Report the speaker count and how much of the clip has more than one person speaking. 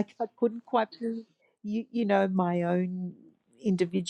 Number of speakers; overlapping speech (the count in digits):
1, no overlap